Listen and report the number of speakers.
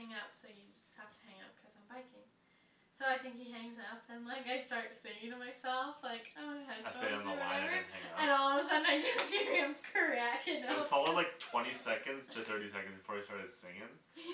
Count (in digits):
2